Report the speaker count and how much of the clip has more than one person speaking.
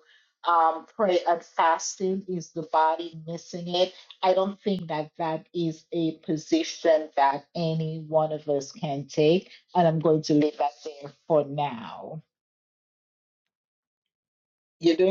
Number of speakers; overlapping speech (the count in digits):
1, no overlap